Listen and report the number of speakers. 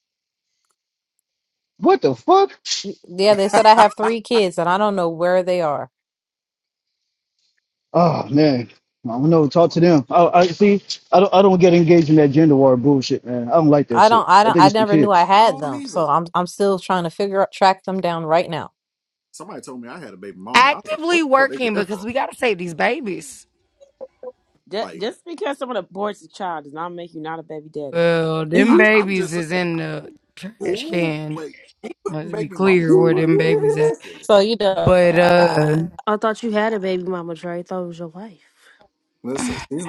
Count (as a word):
six